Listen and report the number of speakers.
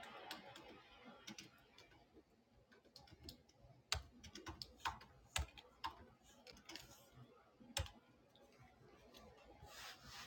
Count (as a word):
zero